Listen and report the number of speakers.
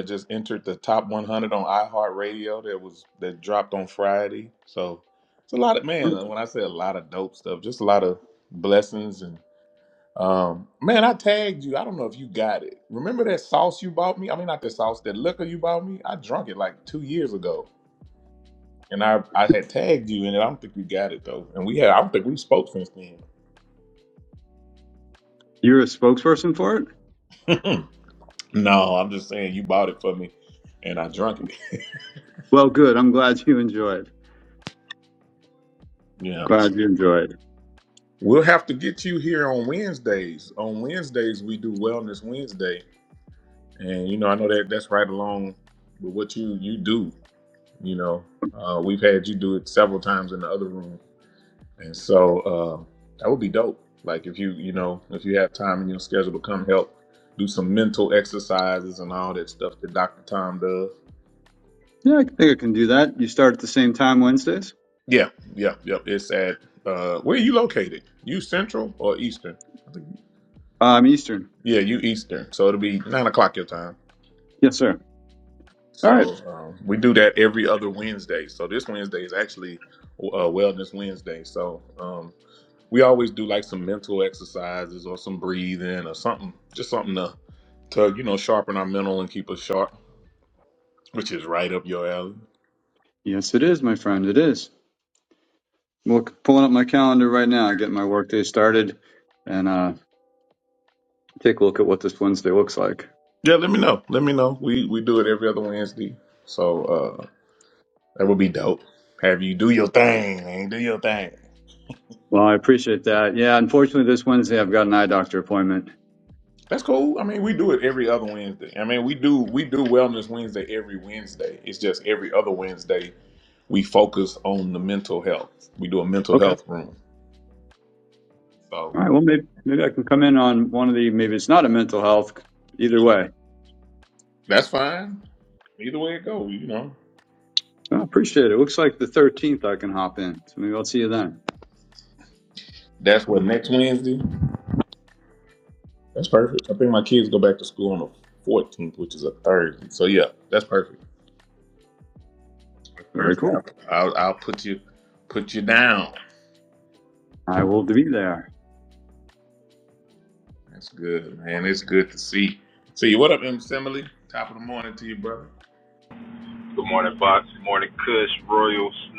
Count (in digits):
3